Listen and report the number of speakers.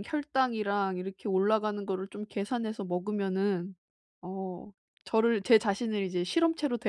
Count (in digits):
1